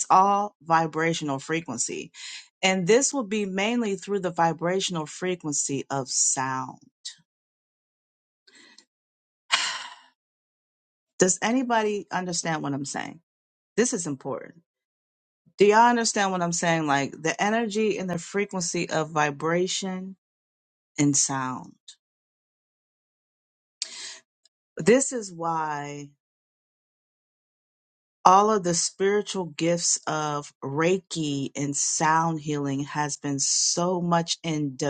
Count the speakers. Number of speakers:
1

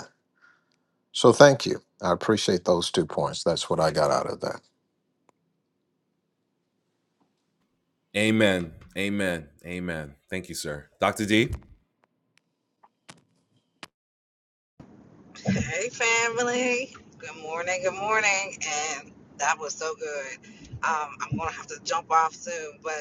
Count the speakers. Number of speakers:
3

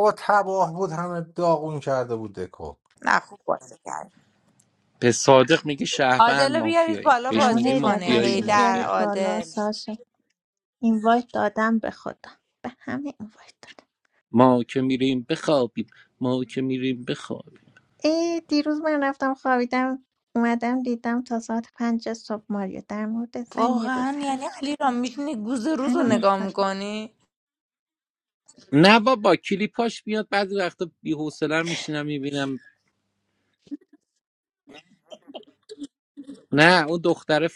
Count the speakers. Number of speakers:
4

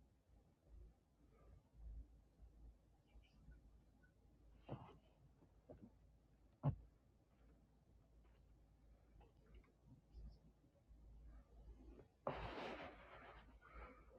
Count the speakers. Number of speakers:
0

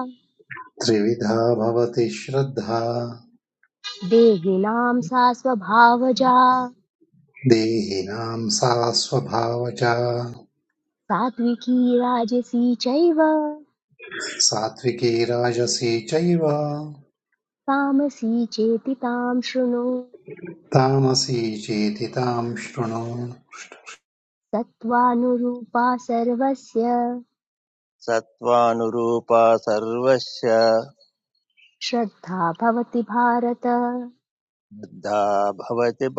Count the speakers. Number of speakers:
3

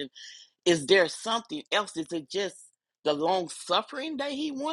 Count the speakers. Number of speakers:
1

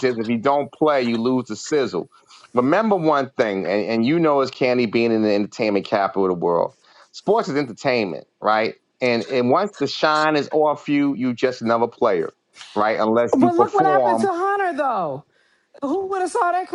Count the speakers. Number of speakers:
2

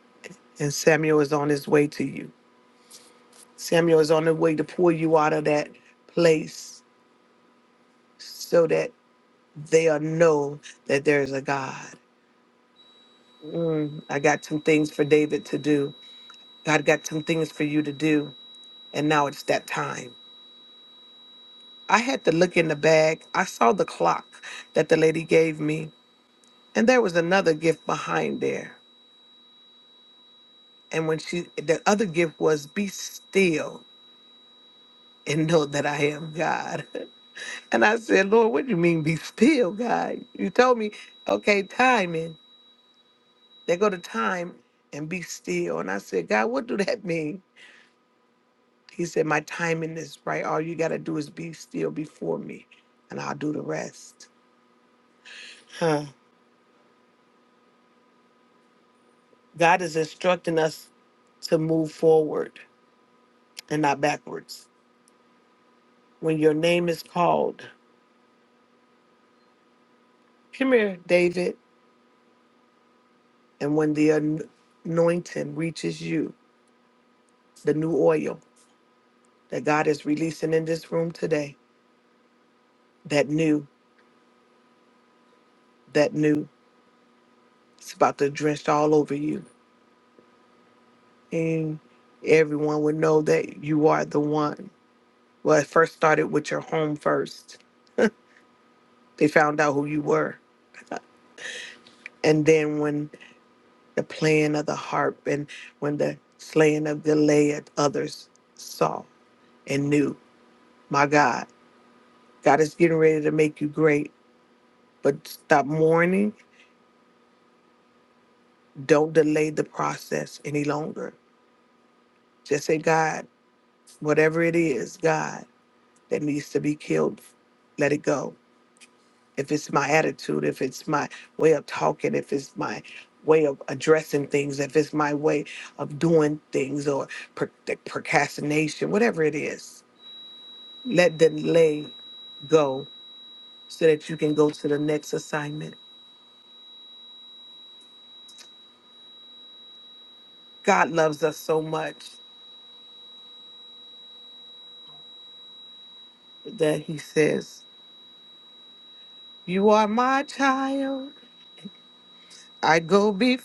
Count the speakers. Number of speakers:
1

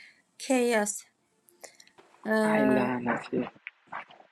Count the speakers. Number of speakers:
2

